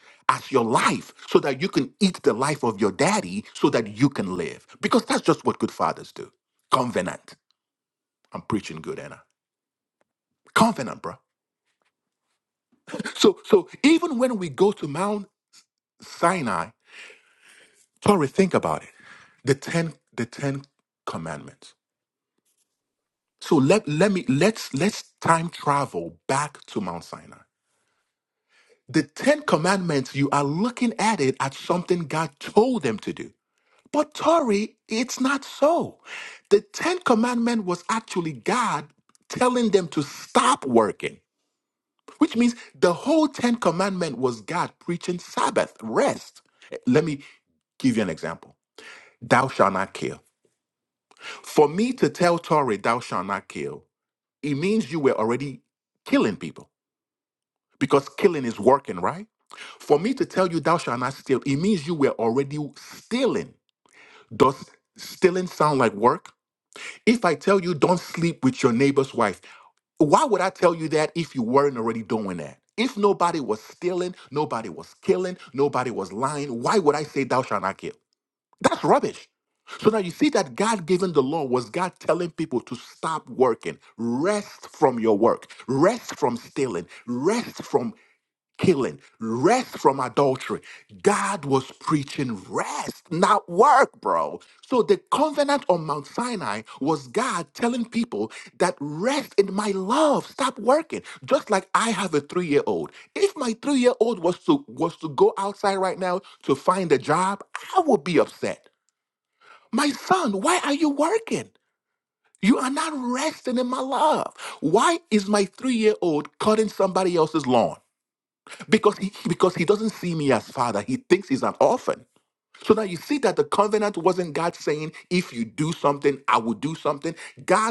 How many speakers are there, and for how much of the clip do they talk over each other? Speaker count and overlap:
one, no overlap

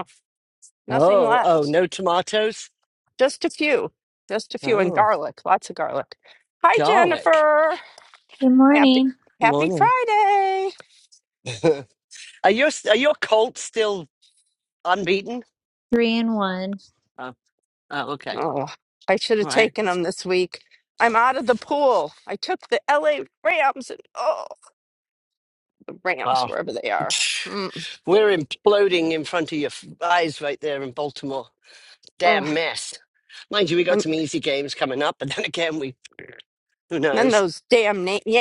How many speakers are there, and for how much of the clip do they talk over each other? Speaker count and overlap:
three, about 9%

